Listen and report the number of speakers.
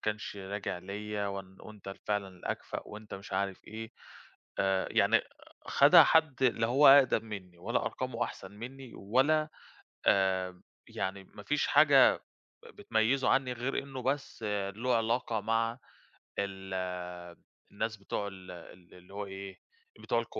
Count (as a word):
one